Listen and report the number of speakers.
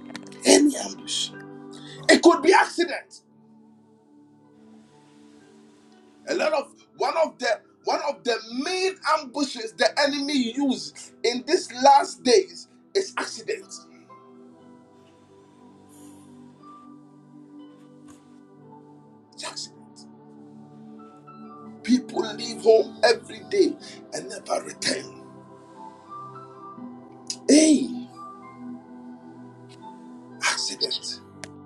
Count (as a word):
one